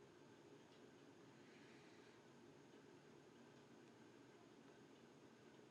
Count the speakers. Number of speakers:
zero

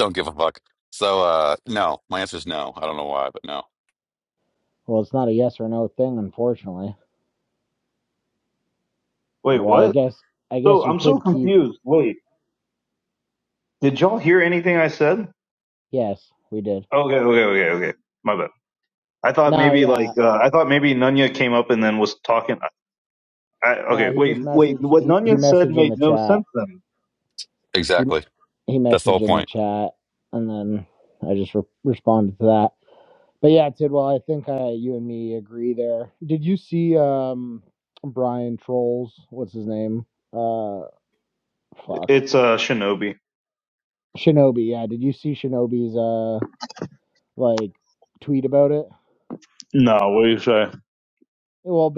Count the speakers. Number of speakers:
three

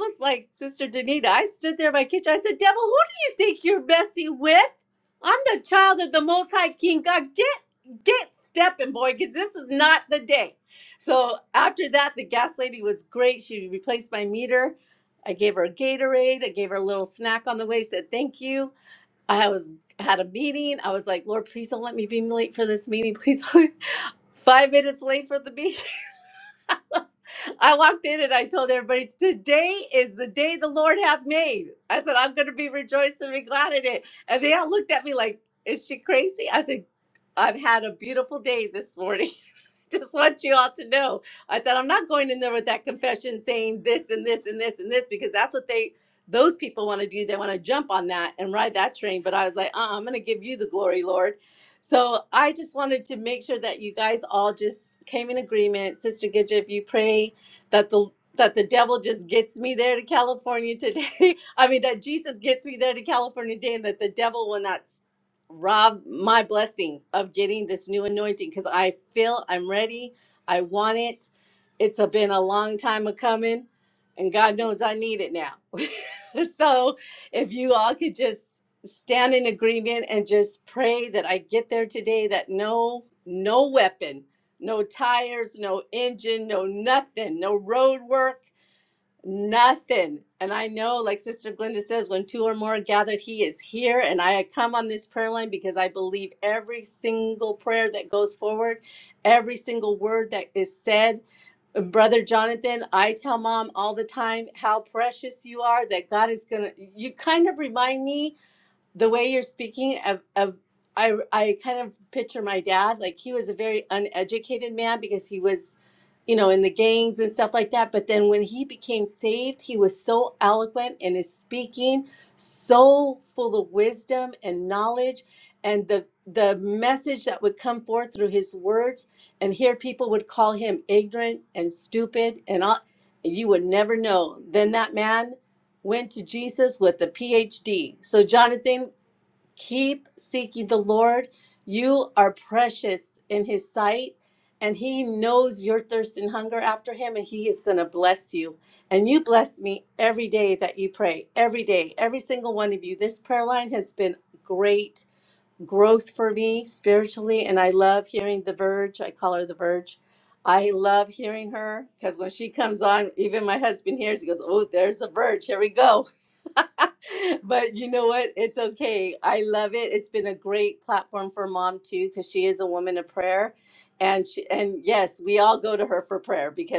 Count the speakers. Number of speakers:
one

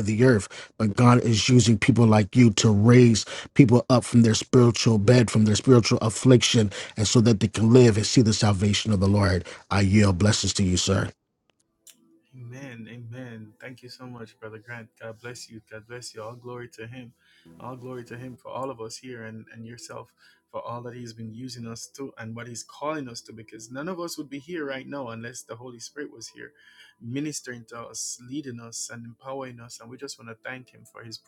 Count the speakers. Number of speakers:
two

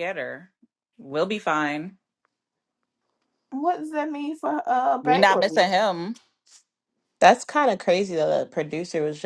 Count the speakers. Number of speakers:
three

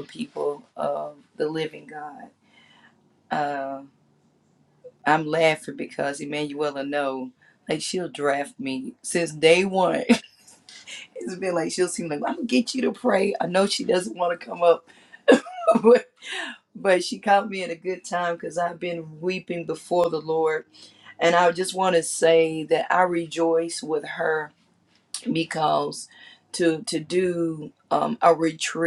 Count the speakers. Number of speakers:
one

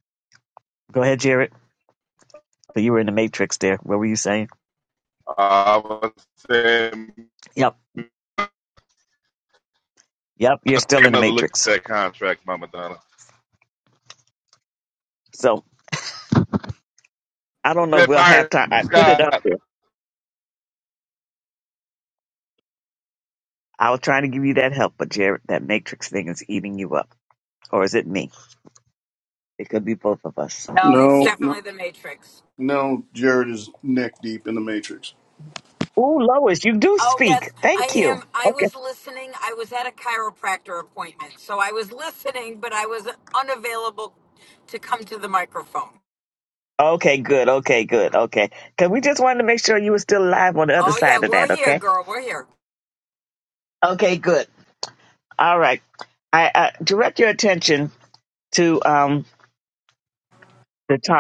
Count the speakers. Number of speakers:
four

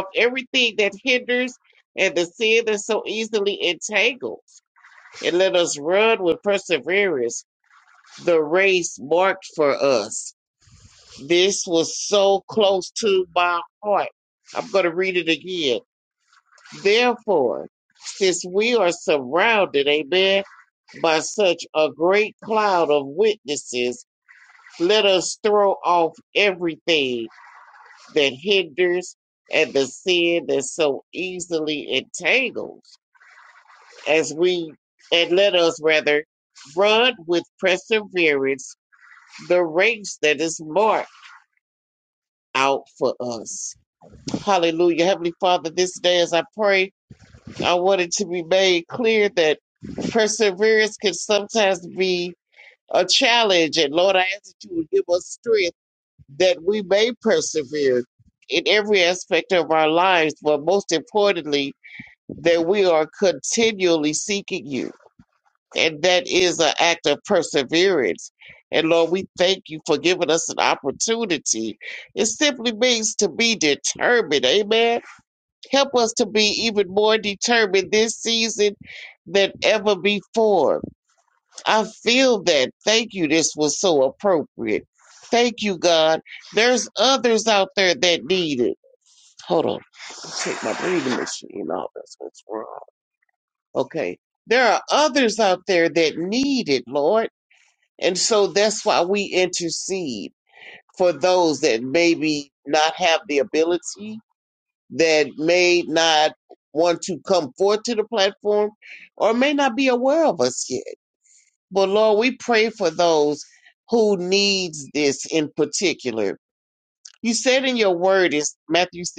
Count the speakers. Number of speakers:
one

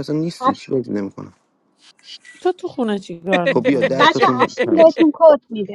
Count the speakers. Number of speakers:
three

